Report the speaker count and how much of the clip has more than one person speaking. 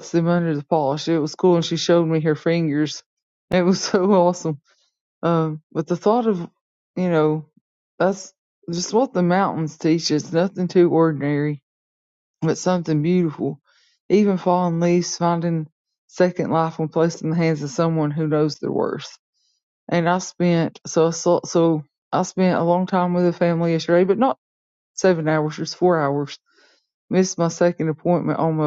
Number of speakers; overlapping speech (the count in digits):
1, no overlap